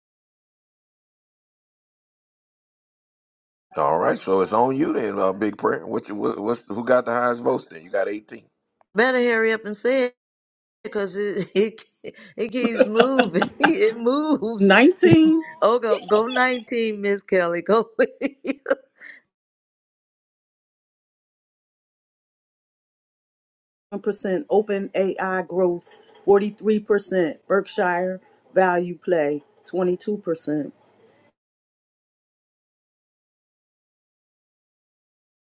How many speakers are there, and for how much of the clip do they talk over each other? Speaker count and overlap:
three, under 1%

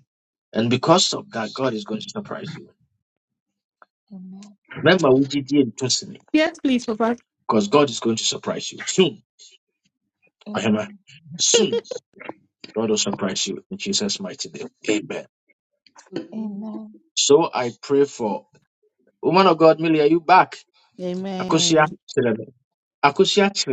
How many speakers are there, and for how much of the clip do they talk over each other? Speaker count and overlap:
three, about 4%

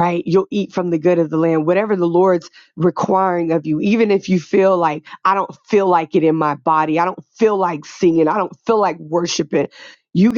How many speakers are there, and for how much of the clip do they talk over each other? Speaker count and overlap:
one, no overlap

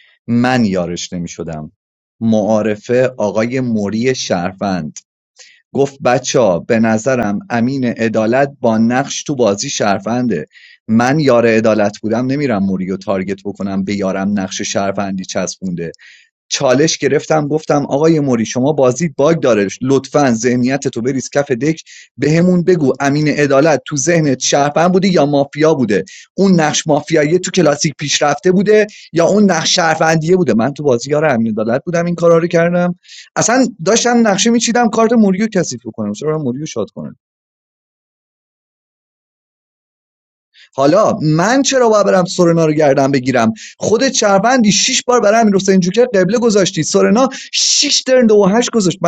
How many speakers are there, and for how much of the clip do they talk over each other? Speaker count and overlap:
one, no overlap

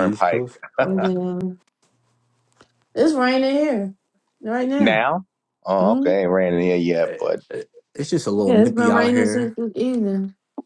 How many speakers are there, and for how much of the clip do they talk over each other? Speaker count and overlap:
three, about 21%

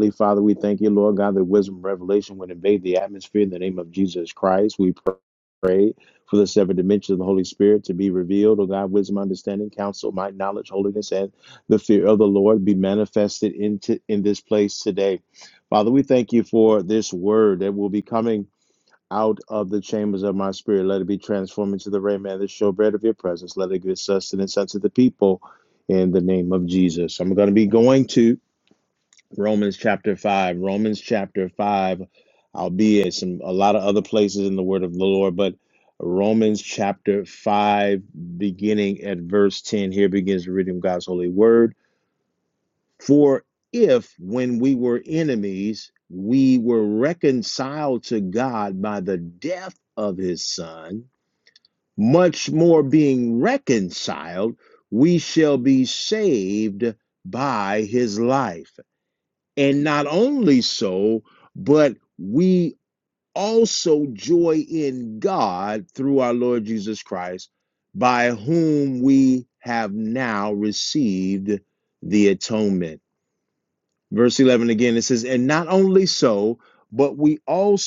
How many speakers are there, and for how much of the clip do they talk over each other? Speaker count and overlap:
one, no overlap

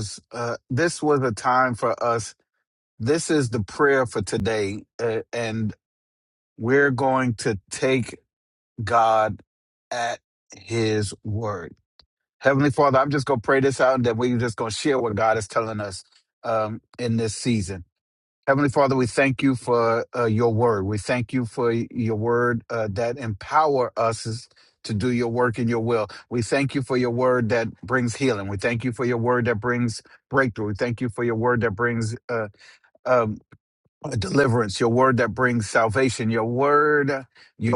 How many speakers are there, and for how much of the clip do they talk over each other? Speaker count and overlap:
one, no overlap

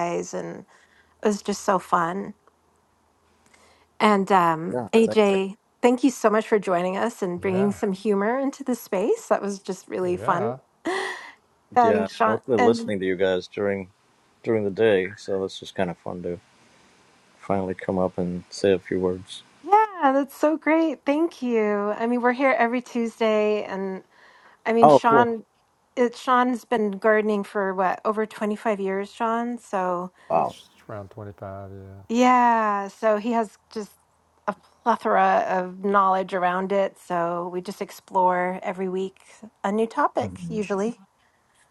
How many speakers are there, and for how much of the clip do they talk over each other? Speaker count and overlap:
three, about 8%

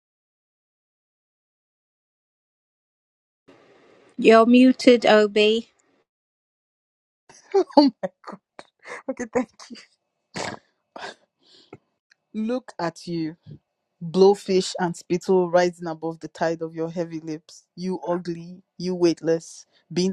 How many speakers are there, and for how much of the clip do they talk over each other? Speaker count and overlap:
two, no overlap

